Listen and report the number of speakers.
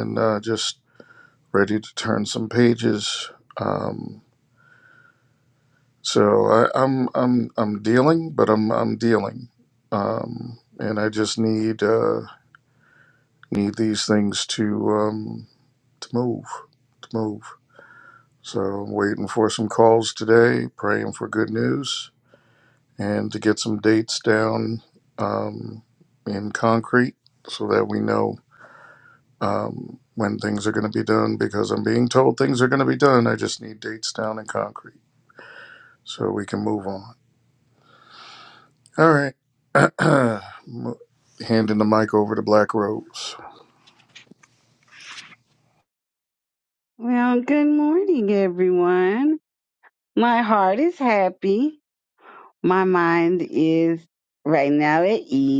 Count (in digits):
2